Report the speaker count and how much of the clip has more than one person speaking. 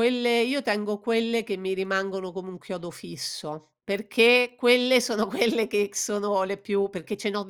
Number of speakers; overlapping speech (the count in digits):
1, no overlap